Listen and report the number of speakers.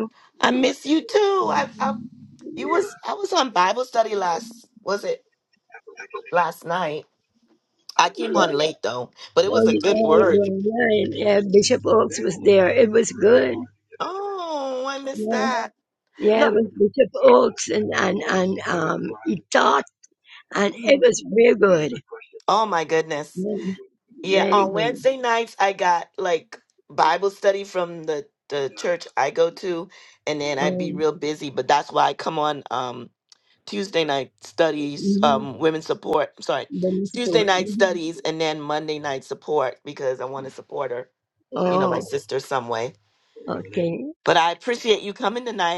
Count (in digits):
2